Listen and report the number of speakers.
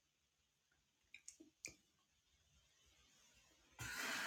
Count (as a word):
zero